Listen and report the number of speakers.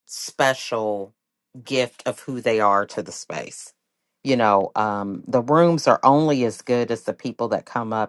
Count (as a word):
one